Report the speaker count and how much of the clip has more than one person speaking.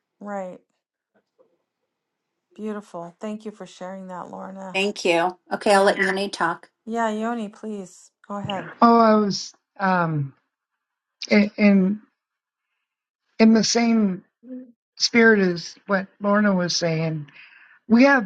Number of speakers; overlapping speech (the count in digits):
3, about 1%